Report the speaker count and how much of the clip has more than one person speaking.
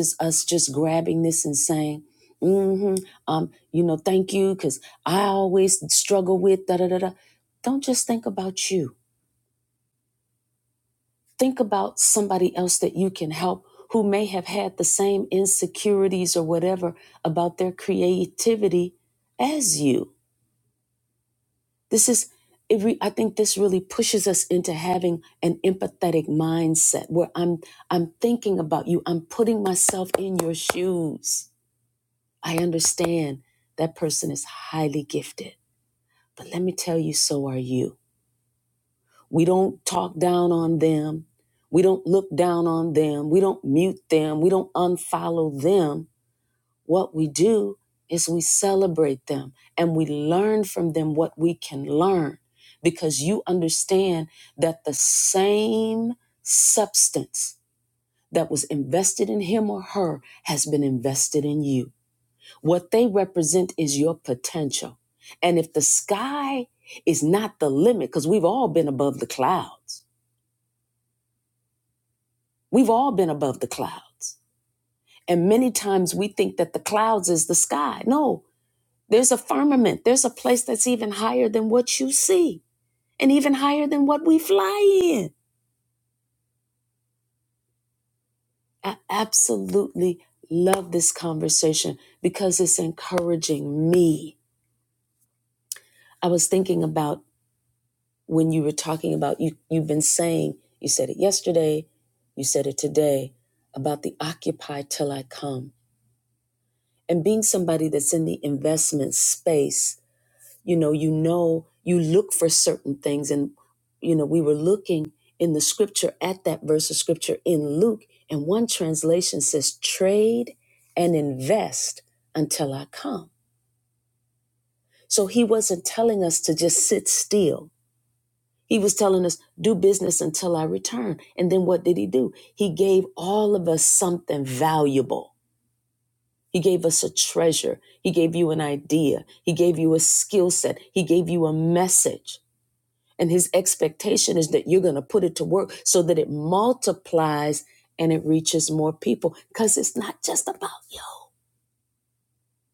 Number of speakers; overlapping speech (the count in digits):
1, no overlap